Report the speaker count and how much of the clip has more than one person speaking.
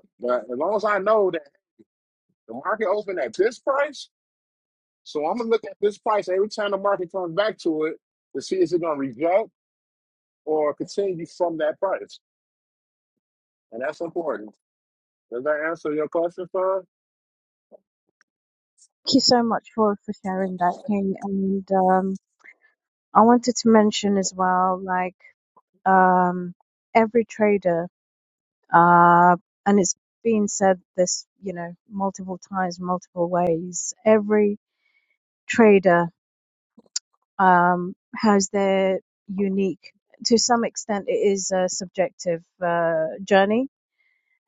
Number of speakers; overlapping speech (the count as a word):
two, no overlap